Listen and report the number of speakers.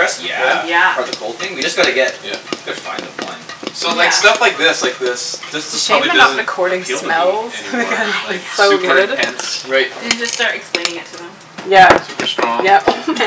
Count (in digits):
4